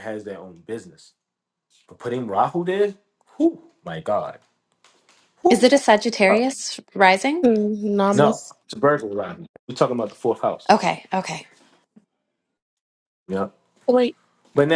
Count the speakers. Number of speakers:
3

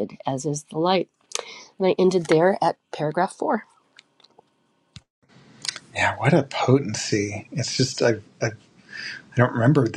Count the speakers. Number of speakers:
2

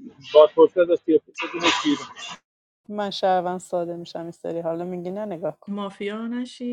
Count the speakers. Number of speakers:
3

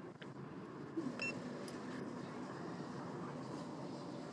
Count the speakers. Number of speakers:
0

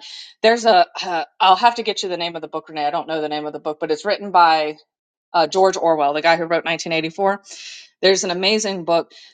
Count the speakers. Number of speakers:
1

